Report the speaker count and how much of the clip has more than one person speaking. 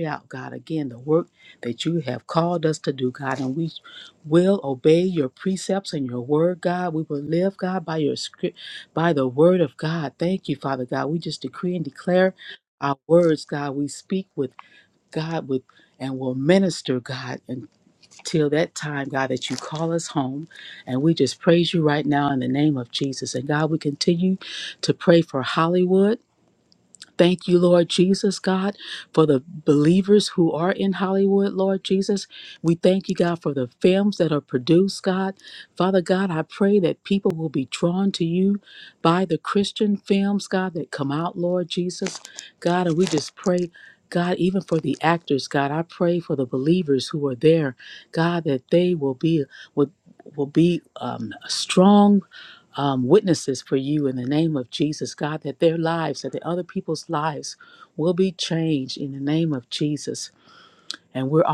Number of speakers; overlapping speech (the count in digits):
1, no overlap